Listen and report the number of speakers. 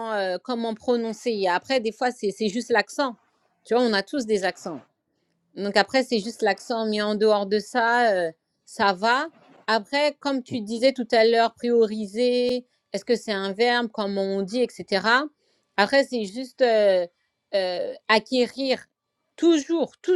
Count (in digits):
1